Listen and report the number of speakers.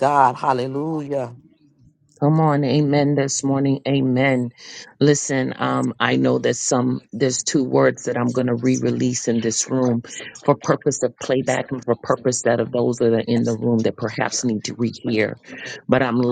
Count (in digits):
2